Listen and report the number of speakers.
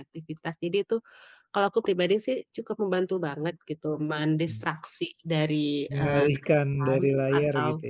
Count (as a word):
two